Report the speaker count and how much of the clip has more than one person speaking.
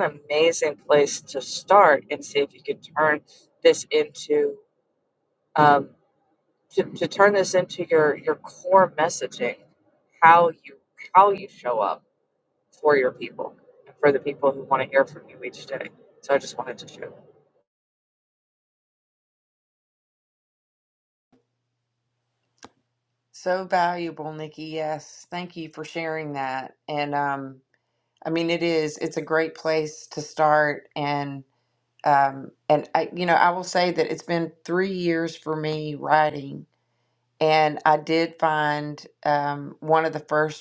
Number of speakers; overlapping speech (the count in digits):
2, no overlap